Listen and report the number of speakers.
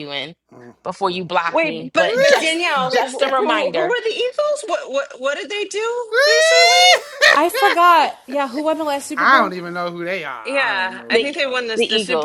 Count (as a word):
four